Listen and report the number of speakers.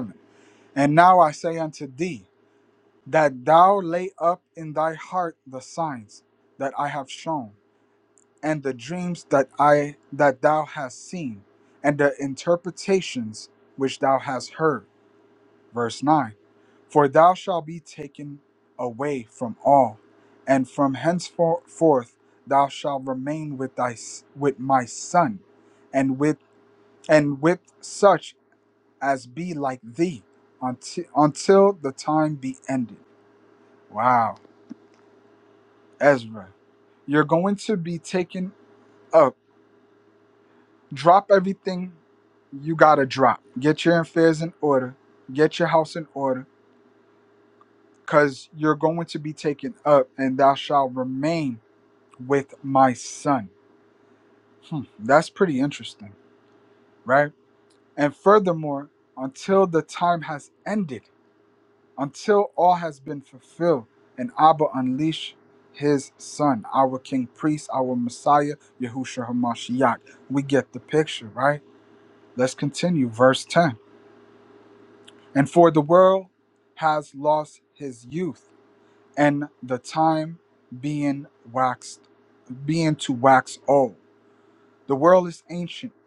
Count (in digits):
1